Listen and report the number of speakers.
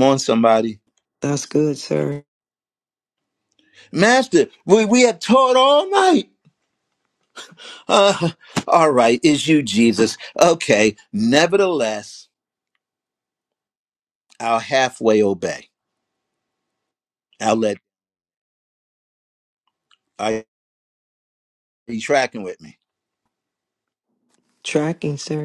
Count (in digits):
2